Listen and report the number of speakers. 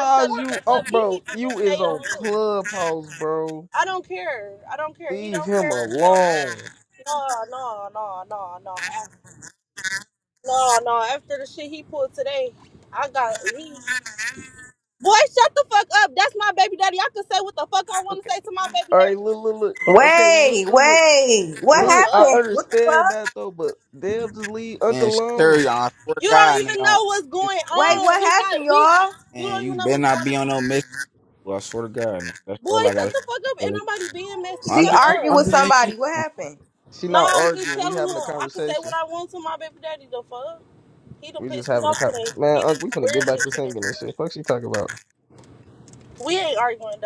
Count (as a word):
four